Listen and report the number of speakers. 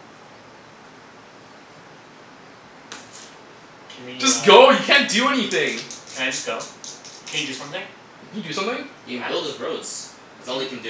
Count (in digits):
3